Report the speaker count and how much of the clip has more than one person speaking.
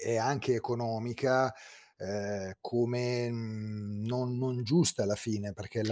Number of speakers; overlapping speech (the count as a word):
one, no overlap